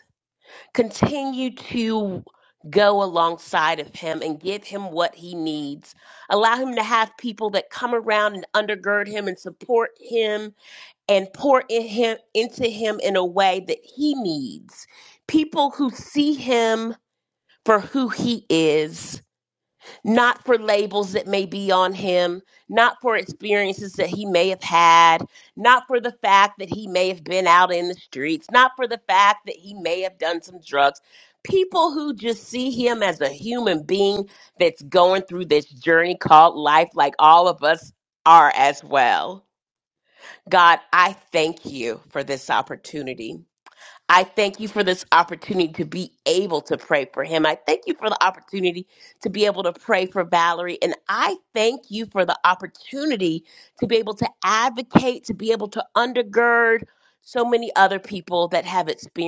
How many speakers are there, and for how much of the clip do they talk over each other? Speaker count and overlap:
1, no overlap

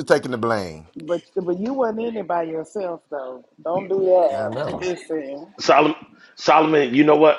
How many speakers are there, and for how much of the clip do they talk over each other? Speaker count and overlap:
3, about 6%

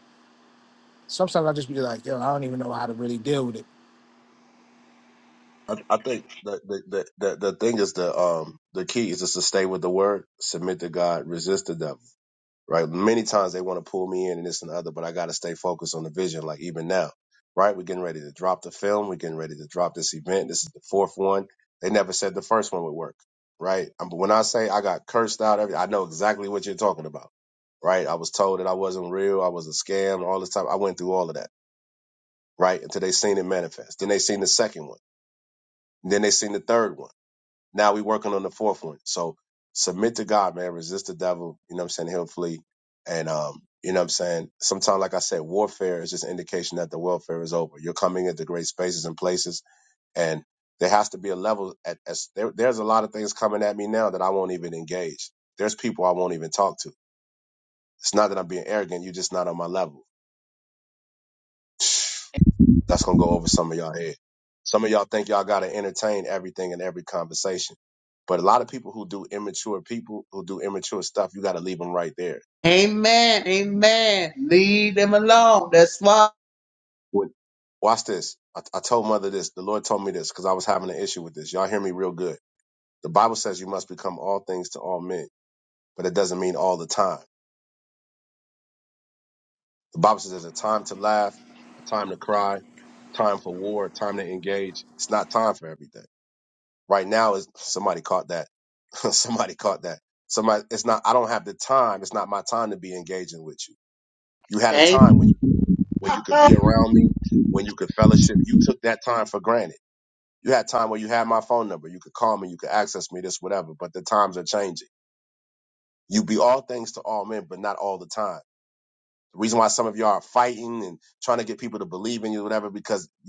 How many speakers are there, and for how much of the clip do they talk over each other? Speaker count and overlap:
3, under 1%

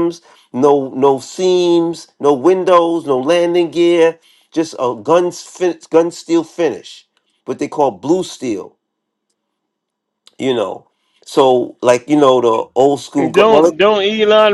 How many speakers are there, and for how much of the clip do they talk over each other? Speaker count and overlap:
2, about 3%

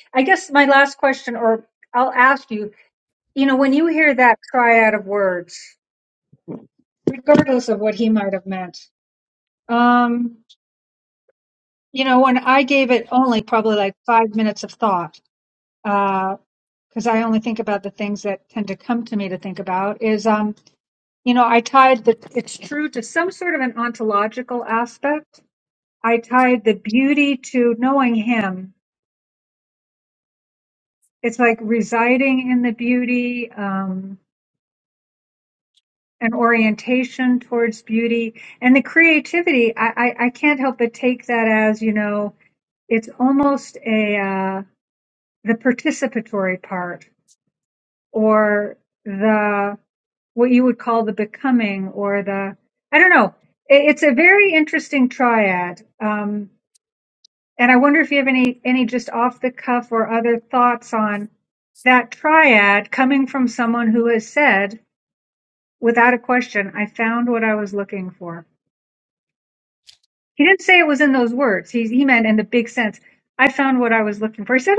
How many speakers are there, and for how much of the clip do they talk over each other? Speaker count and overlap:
1, no overlap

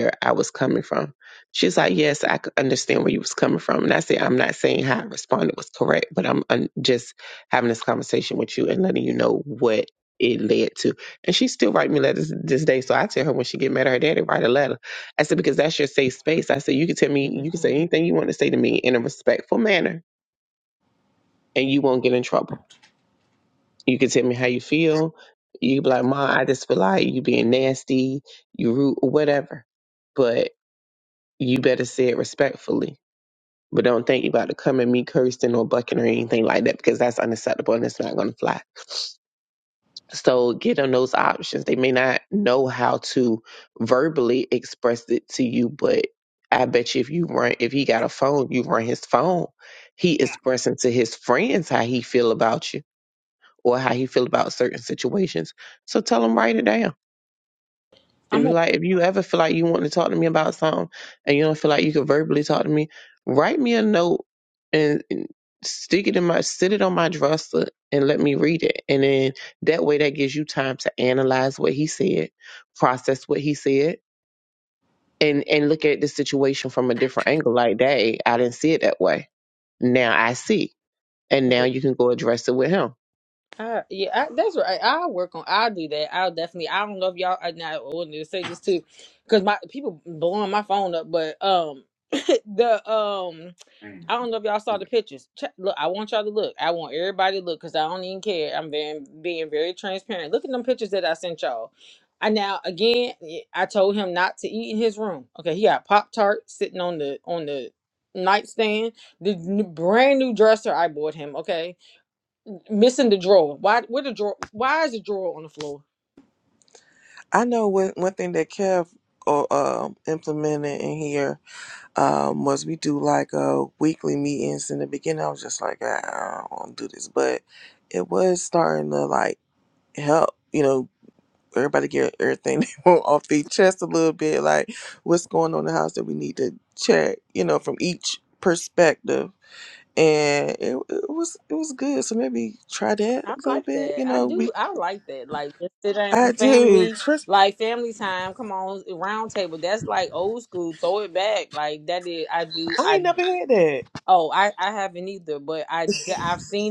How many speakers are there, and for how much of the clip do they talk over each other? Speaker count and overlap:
3, about 2%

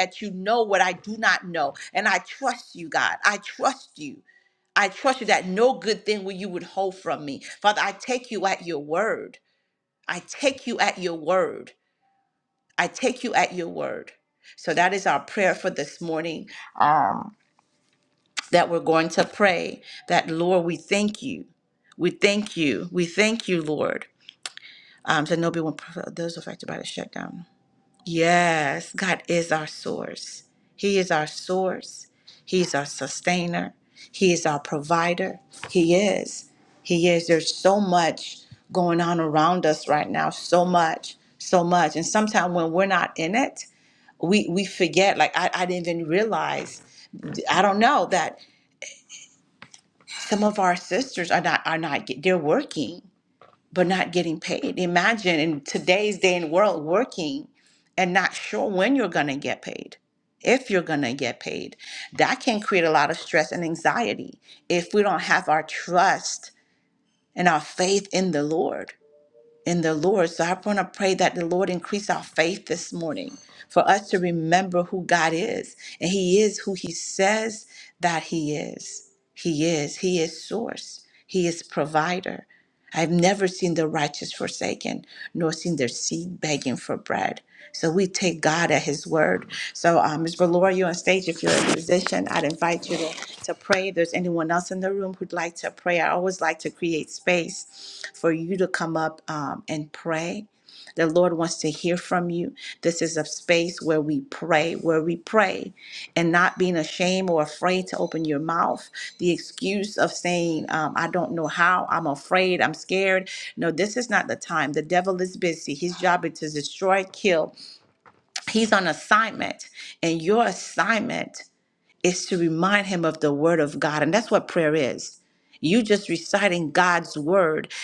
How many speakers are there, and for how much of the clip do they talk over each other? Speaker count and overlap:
1, no overlap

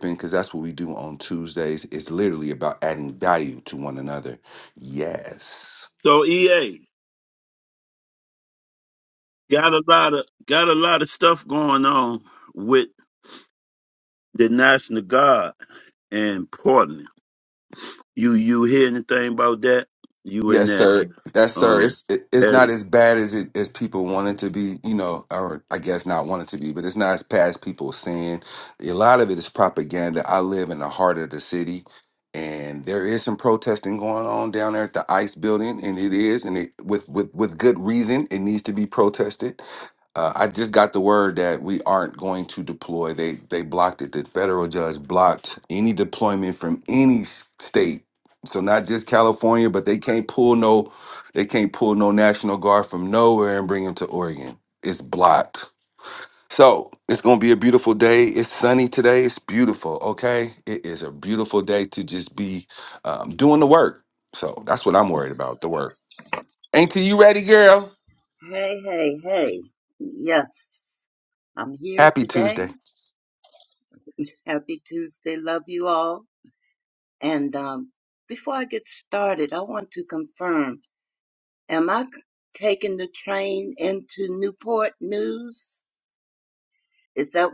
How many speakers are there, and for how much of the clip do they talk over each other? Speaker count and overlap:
3, about 2%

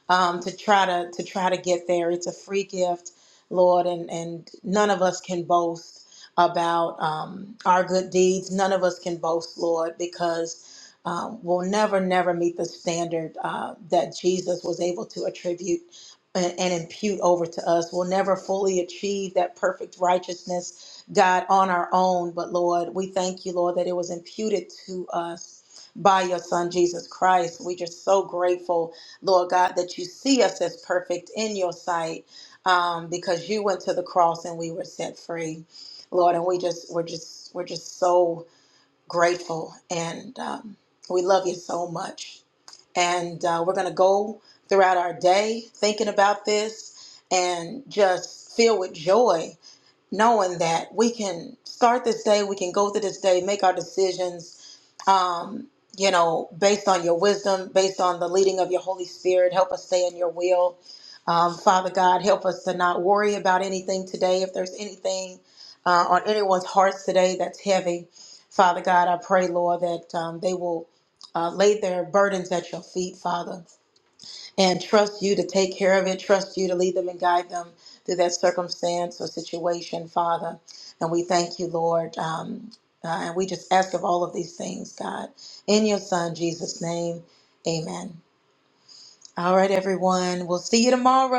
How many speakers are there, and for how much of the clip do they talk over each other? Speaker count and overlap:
1, no overlap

